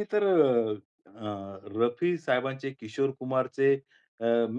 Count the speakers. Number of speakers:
1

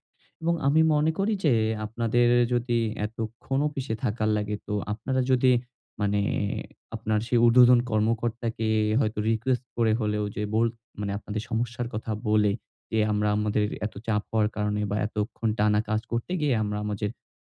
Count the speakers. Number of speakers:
1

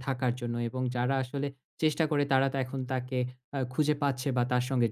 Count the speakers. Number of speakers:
1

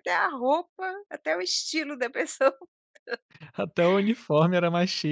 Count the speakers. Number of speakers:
2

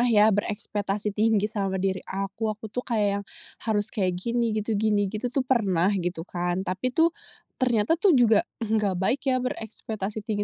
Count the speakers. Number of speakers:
1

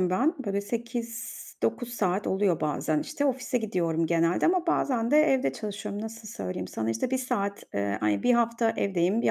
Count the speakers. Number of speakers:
1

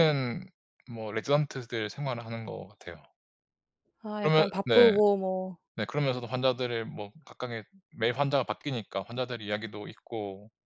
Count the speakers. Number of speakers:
2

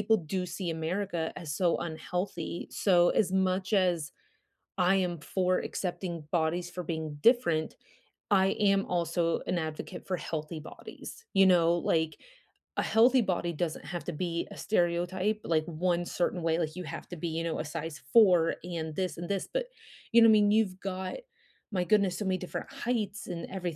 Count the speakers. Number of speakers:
1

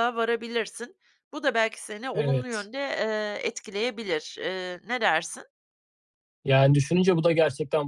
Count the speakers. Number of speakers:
2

